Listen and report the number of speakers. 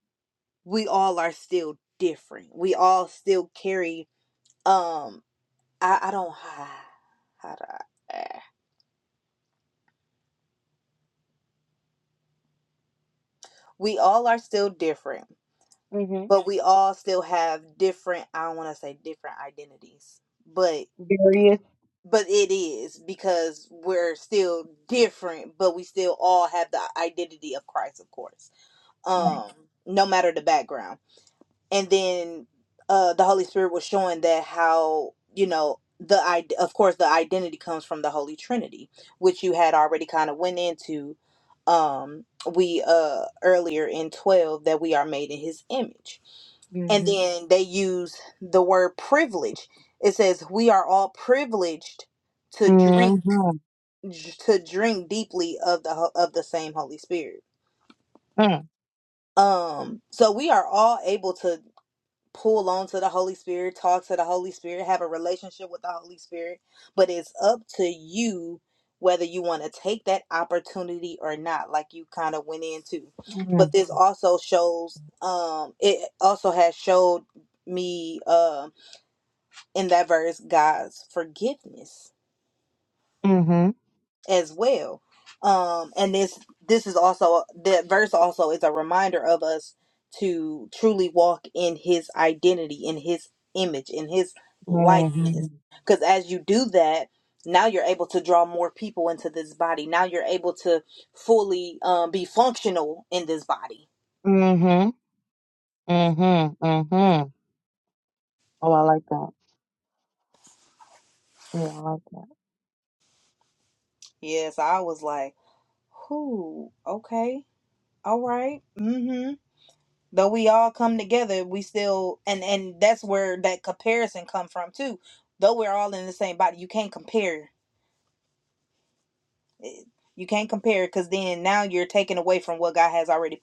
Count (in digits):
2